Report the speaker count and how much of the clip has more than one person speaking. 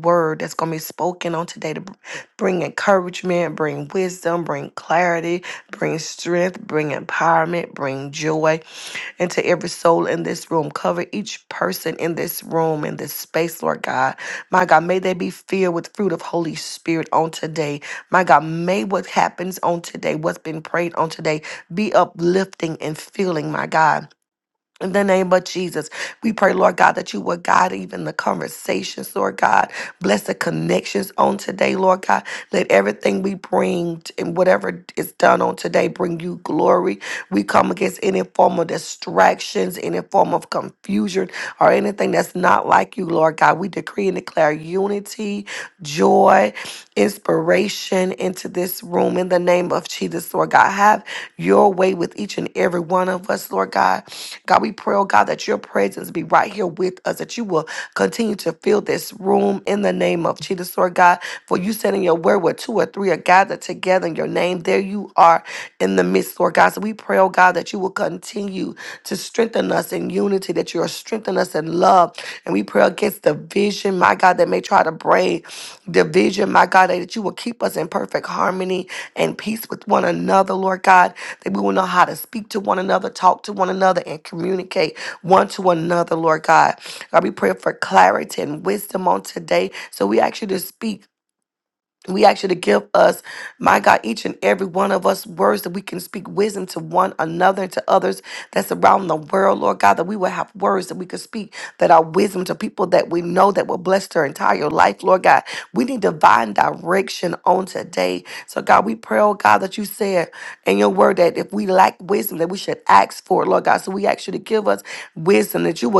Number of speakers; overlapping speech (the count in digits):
1, no overlap